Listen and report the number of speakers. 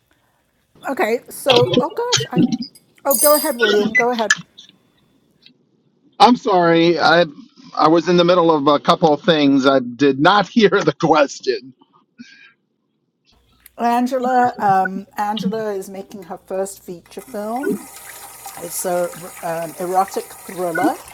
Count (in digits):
2